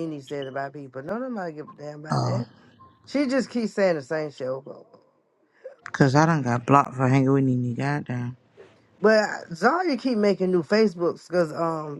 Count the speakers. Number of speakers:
two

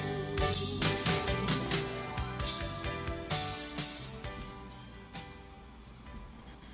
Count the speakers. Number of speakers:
zero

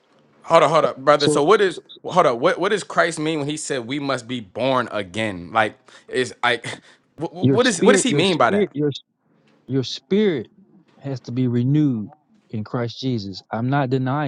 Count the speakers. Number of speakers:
two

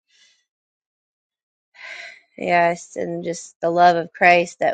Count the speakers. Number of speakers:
one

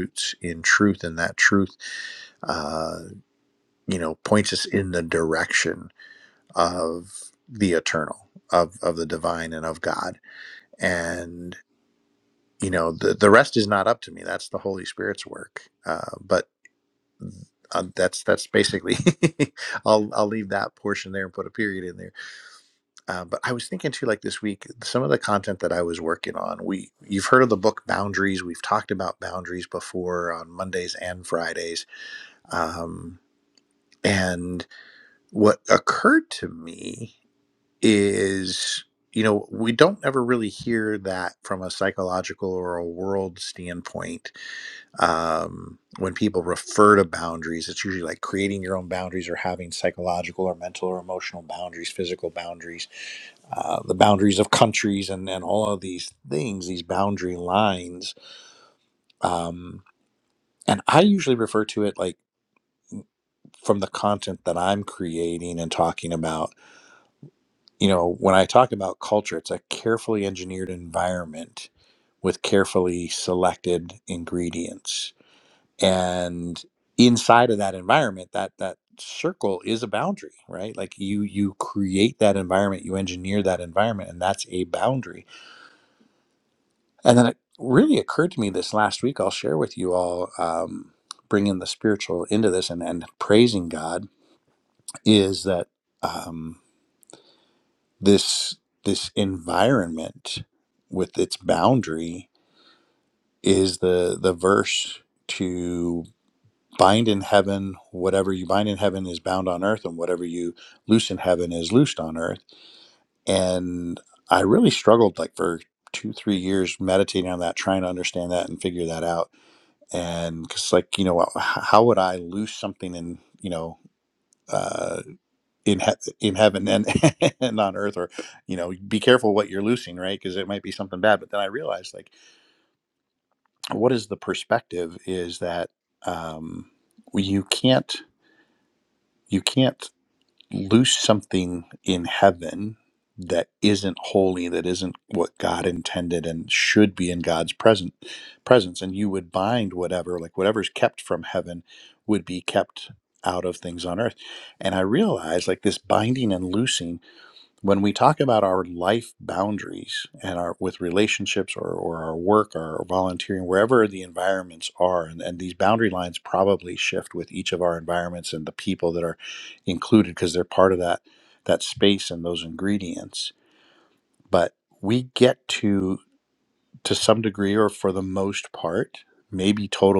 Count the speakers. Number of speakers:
one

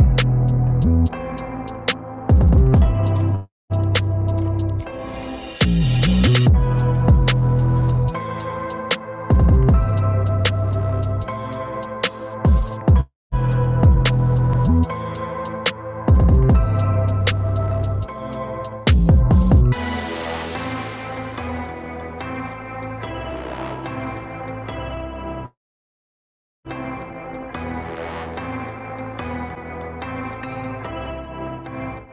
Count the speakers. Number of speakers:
zero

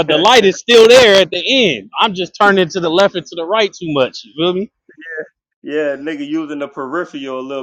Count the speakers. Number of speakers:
two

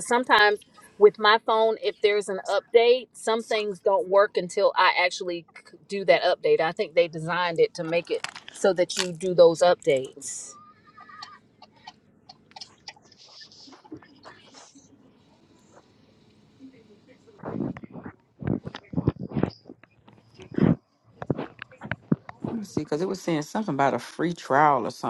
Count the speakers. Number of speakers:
two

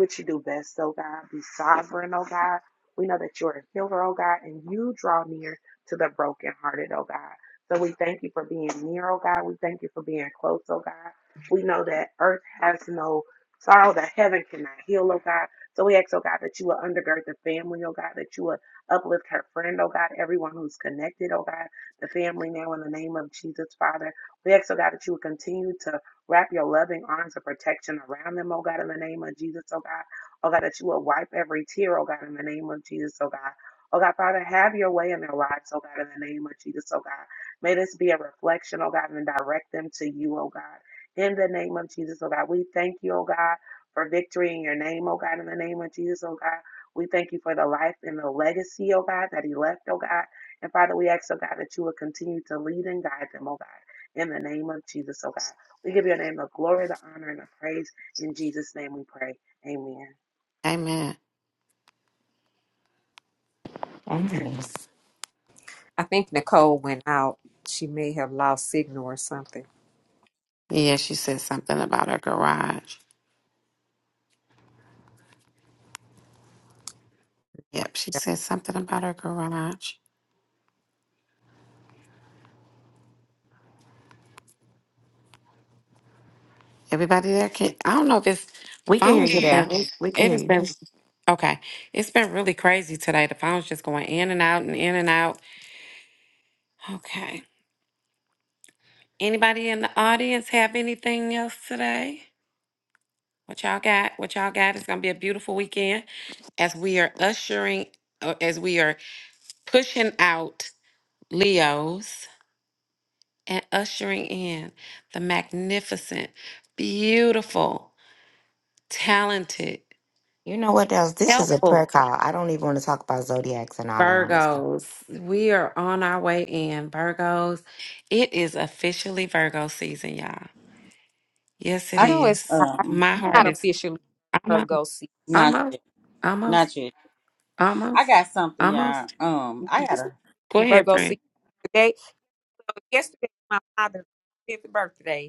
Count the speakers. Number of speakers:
five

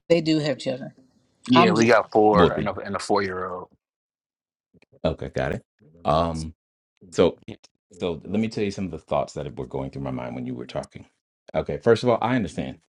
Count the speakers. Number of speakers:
three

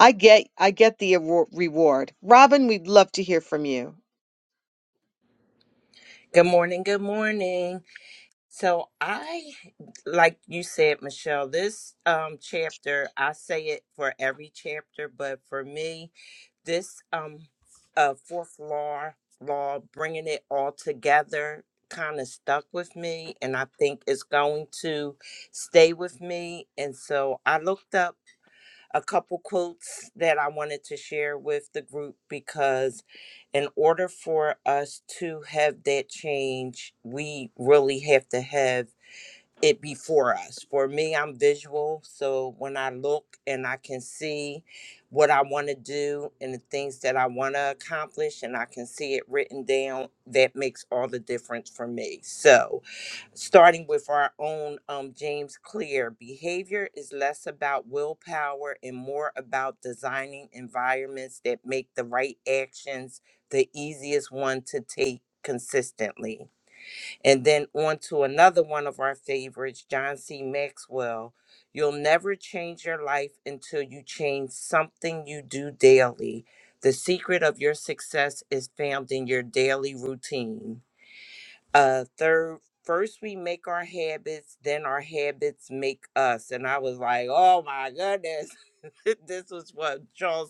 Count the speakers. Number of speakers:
two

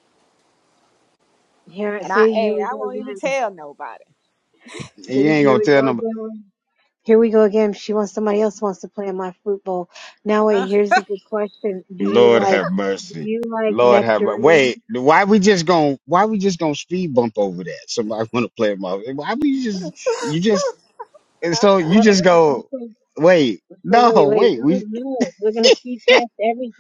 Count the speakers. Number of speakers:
three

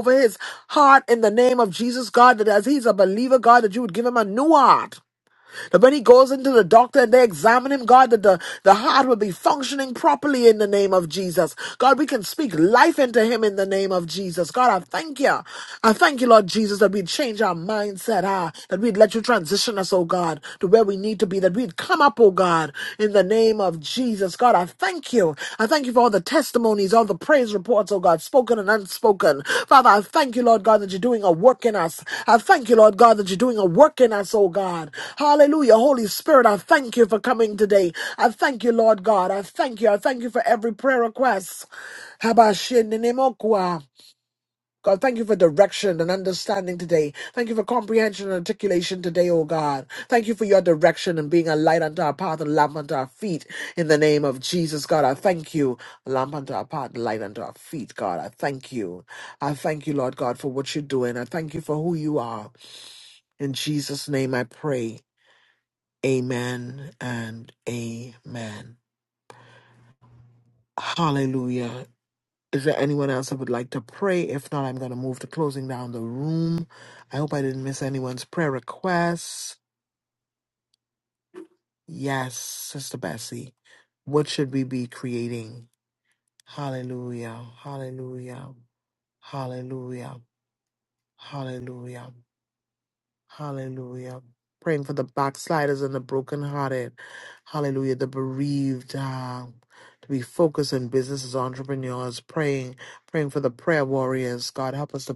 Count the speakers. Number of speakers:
one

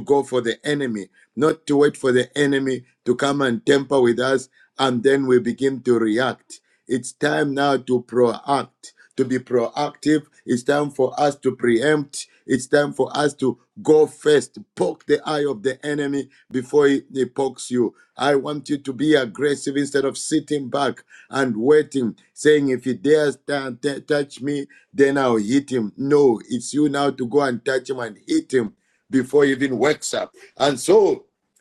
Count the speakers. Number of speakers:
one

